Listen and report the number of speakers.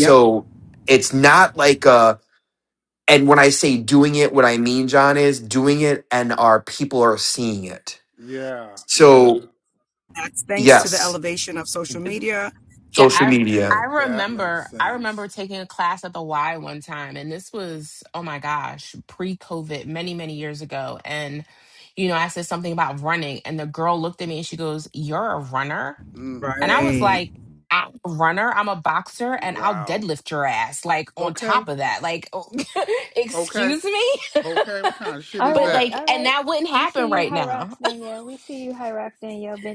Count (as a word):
five